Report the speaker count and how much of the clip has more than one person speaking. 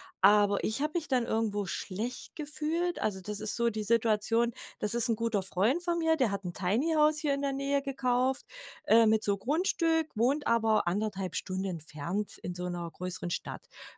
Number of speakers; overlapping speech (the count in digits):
1, no overlap